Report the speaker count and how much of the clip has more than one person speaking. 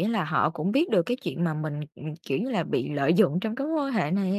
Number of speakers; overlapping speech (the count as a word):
one, no overlap